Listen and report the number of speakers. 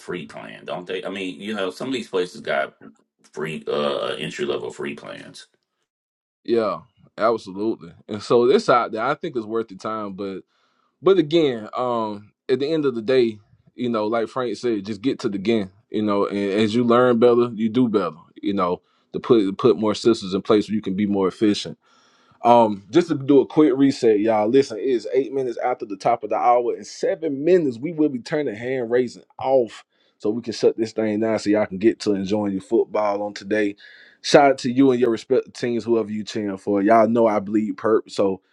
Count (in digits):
2